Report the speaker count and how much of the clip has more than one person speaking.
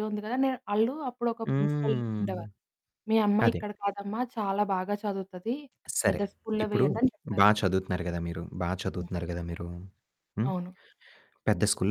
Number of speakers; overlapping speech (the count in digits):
2, about 15%